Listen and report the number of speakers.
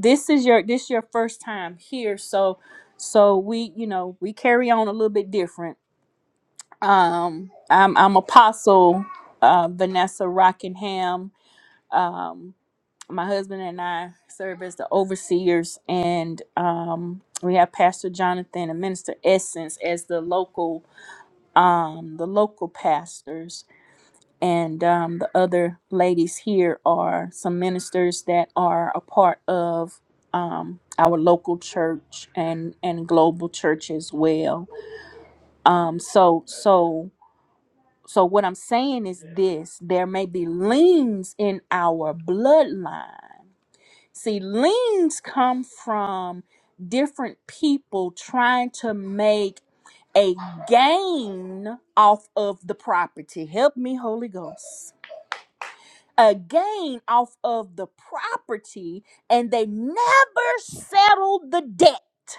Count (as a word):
one